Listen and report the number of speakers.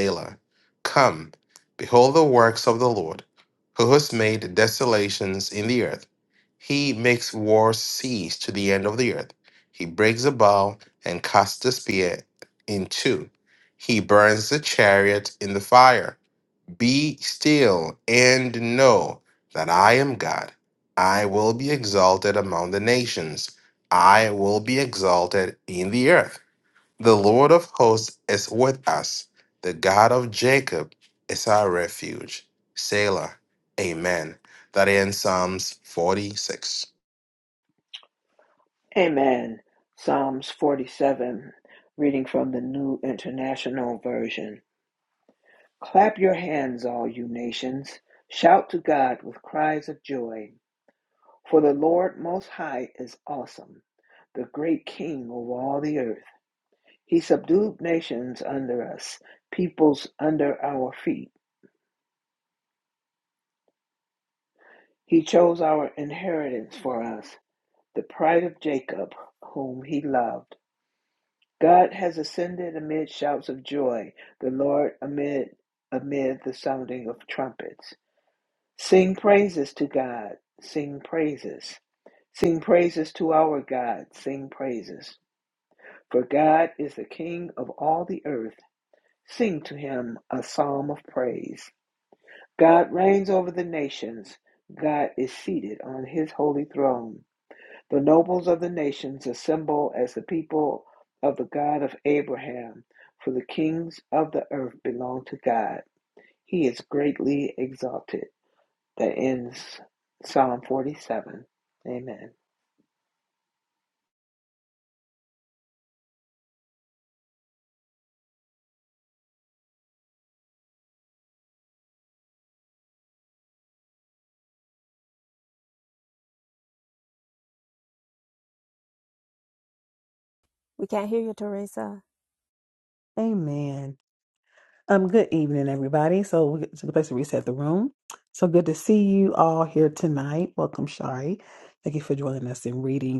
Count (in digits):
4